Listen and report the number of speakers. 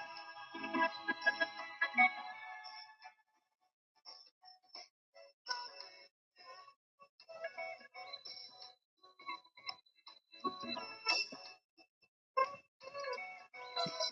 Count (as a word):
zero